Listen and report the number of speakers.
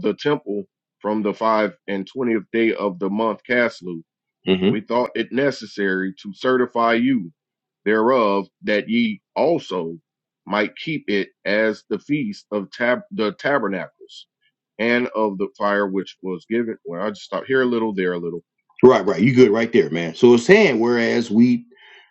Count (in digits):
2